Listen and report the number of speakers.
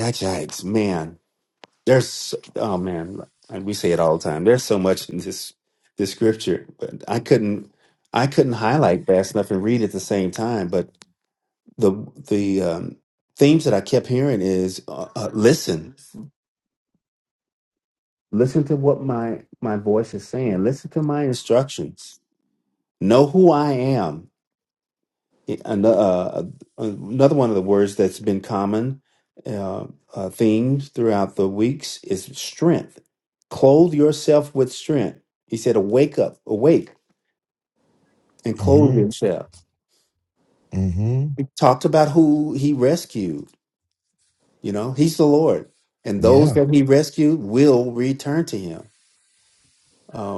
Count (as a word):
two